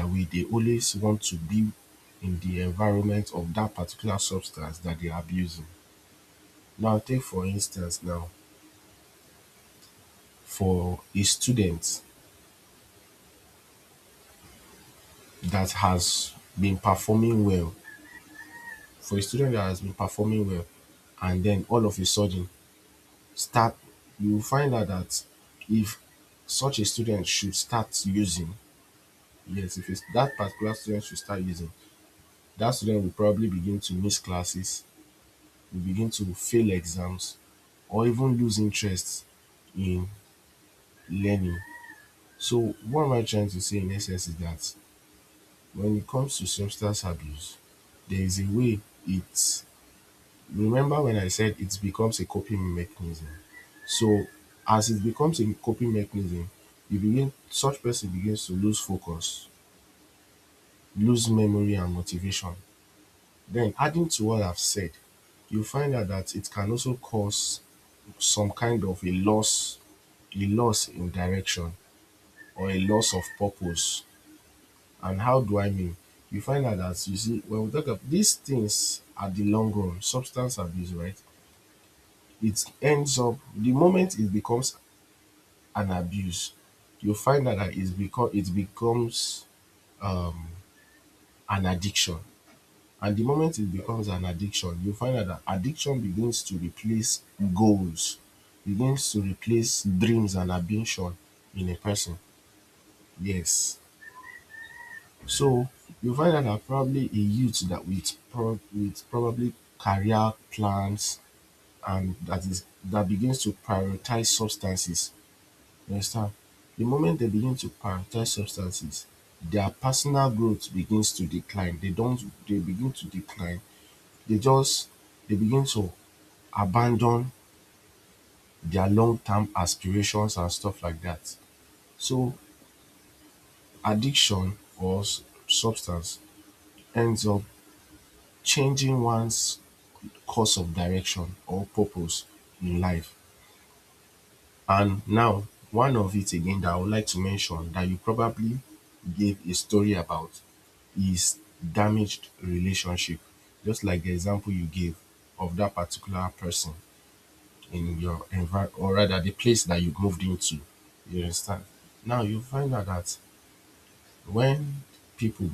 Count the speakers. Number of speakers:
1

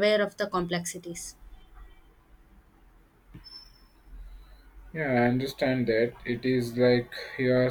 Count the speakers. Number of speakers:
2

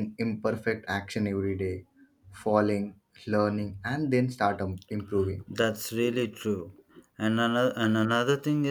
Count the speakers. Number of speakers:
2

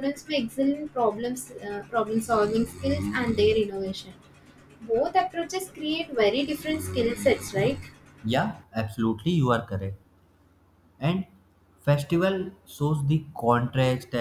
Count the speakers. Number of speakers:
2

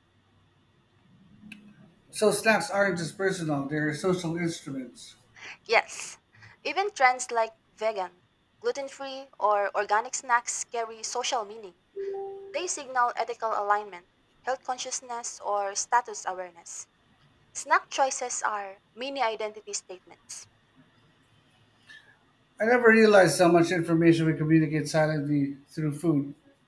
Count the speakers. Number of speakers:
2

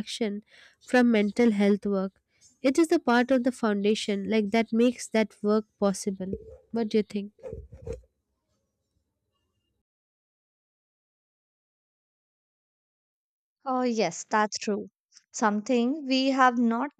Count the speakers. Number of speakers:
2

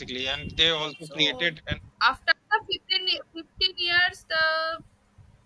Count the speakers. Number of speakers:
2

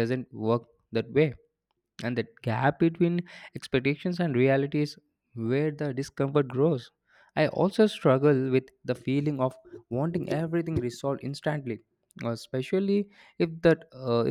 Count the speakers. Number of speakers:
1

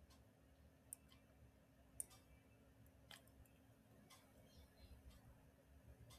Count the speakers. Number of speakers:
0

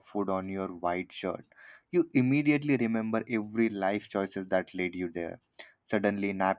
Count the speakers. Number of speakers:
1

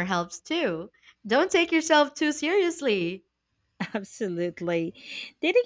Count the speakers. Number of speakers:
2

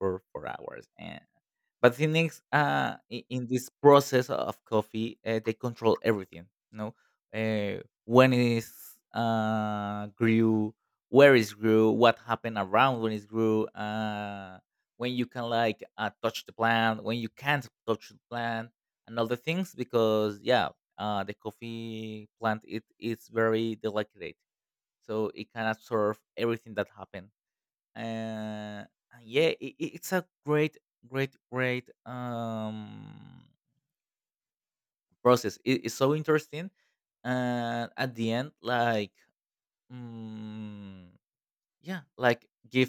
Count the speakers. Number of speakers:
1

